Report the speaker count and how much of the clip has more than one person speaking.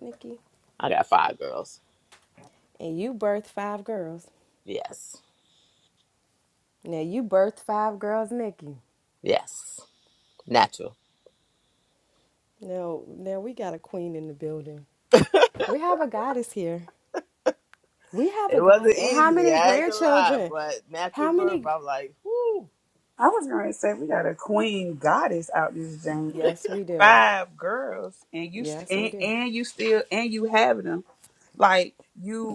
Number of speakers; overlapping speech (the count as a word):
three, about 11%